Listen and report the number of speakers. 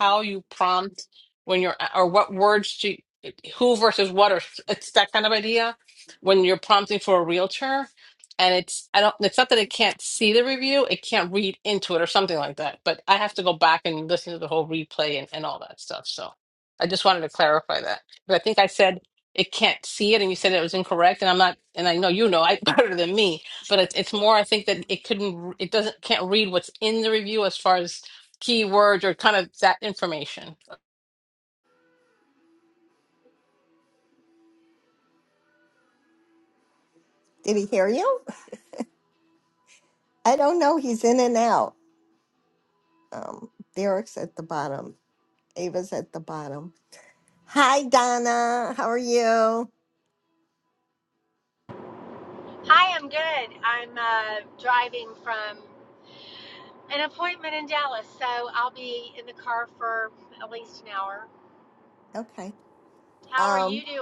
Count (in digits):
3